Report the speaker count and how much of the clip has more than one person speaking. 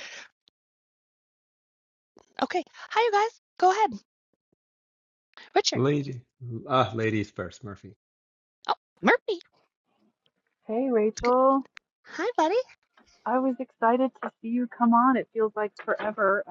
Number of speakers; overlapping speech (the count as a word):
three, under 1%